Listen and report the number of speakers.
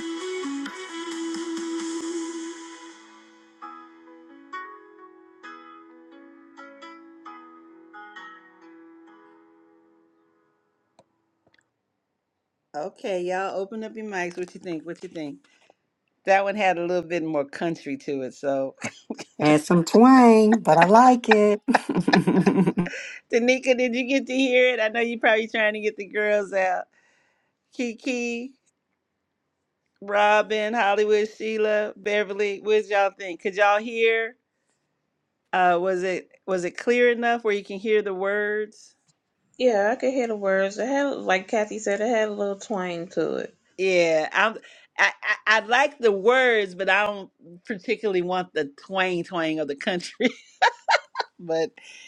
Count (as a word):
three